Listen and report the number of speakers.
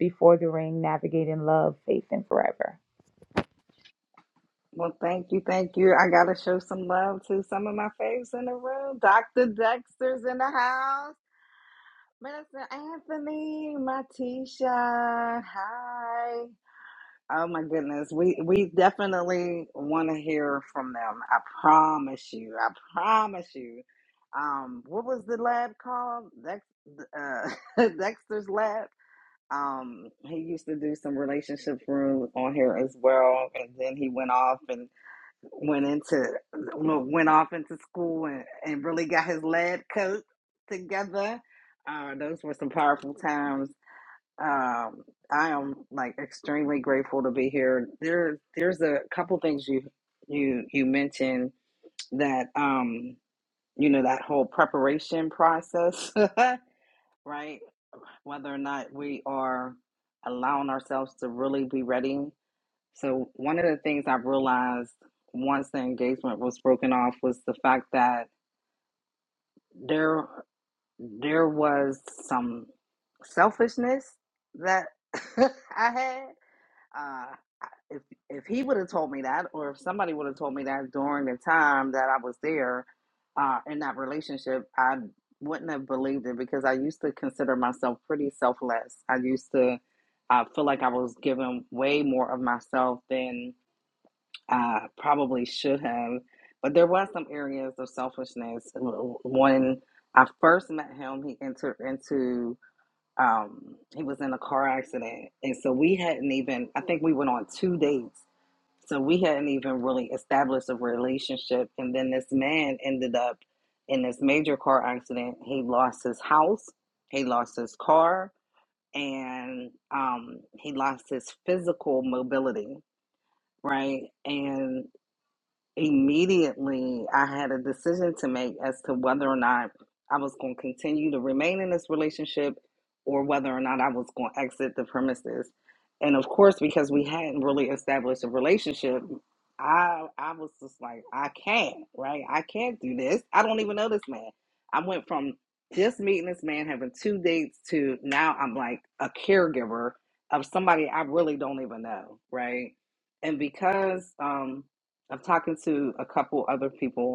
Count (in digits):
2